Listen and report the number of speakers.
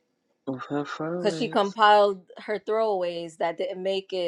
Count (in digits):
2